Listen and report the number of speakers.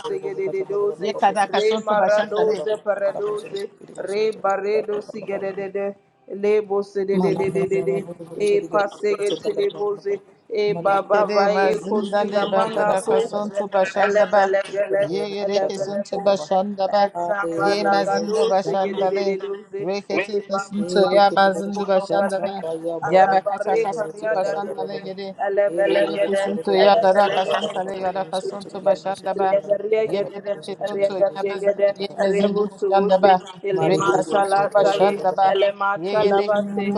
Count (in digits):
3